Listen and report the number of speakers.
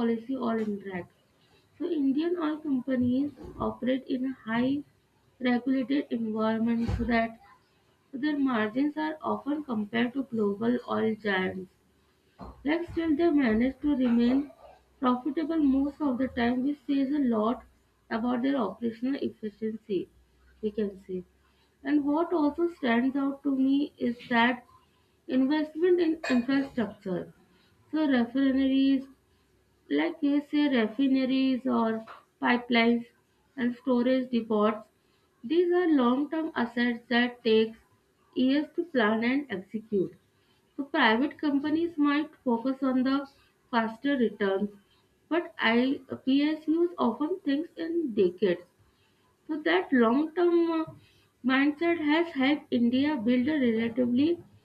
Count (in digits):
1